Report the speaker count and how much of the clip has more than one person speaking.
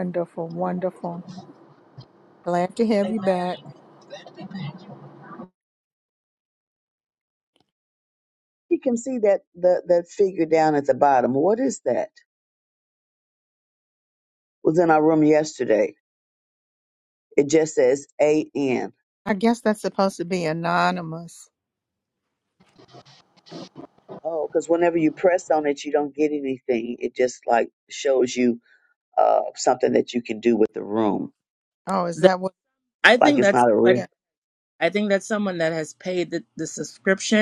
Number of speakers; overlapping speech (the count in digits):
4, about 4%